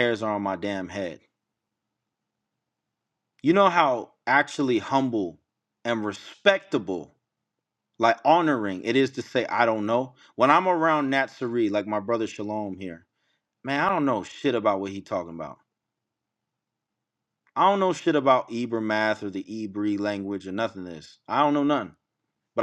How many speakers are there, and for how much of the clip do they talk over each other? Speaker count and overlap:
1, no overlap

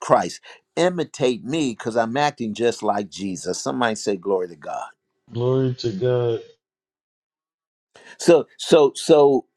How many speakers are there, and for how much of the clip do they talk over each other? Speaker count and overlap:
2, no overlap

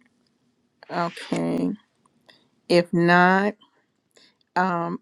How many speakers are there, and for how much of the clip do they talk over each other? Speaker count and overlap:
1, no overlap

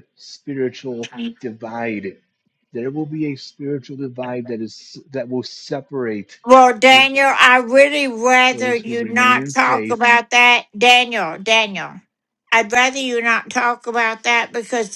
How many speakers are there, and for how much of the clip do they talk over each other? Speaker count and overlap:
2, about 11%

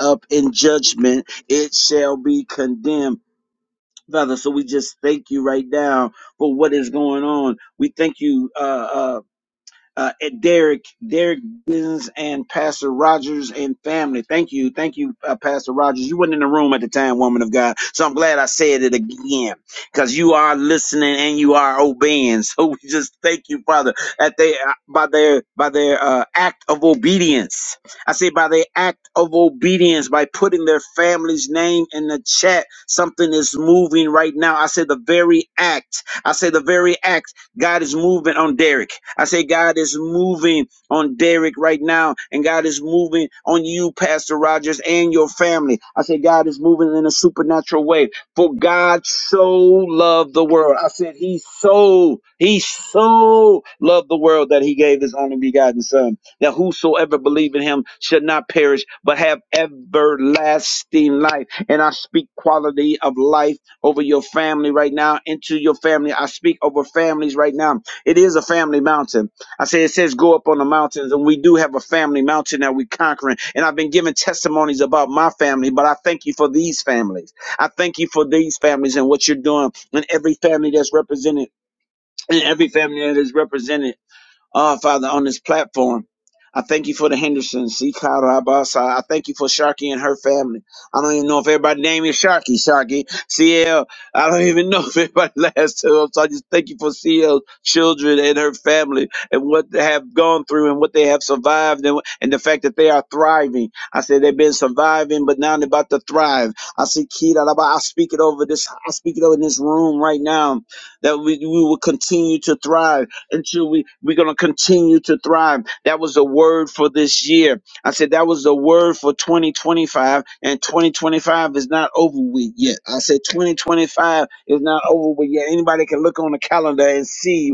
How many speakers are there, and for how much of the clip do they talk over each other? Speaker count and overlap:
1, no overlap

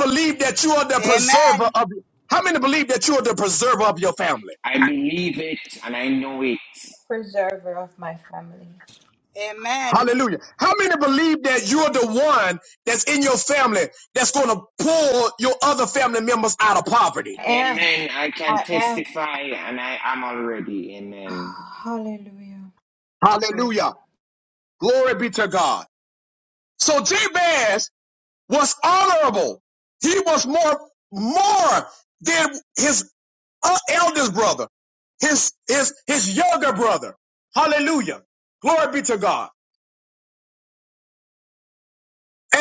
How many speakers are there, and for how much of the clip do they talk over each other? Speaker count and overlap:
4, about 5%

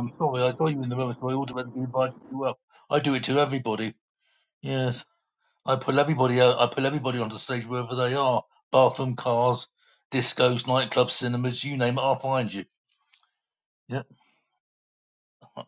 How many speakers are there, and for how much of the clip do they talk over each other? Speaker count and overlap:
1, no overlap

